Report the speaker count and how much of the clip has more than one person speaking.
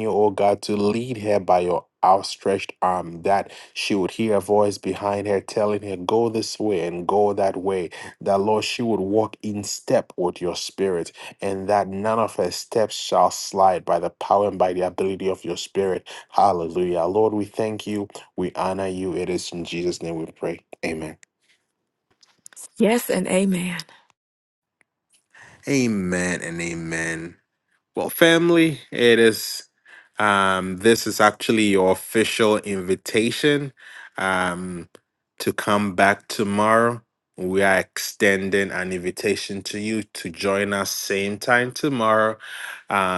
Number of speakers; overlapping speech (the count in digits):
2, no overlap